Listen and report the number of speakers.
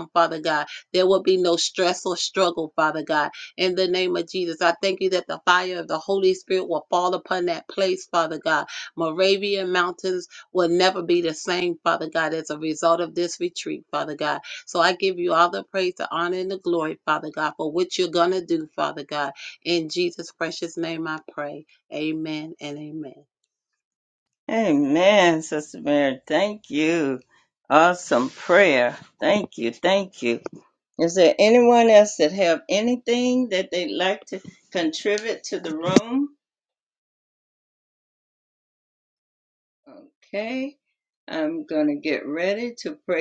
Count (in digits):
2